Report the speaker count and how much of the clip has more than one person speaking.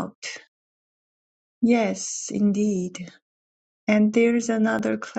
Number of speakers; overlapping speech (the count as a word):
one, no overlap